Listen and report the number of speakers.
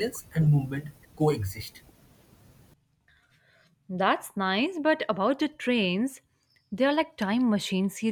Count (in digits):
2